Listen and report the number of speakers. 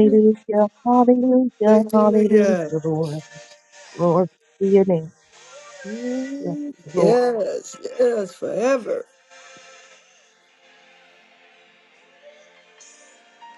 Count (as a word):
two